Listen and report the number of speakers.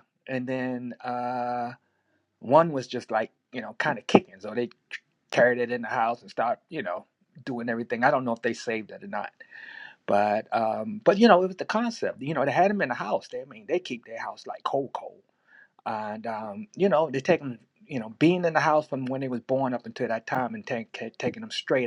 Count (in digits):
1